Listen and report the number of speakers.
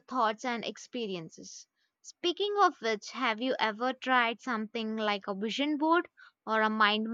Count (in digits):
1